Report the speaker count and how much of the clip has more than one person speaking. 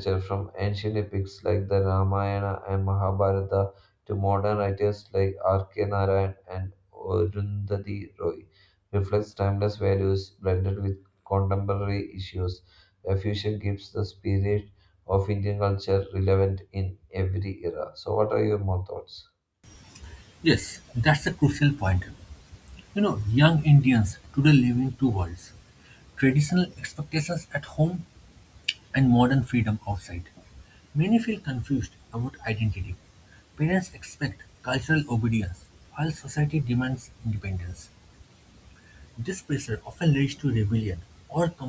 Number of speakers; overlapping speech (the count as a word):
two, no overlap